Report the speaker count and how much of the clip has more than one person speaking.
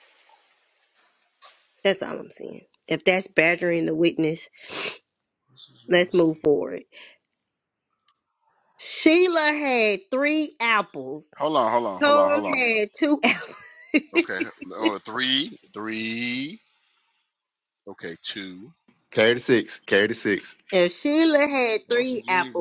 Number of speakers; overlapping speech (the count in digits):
3, about 6%